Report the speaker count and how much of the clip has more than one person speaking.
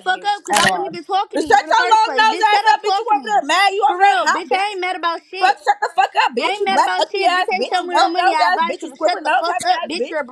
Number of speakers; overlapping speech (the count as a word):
two, about 73%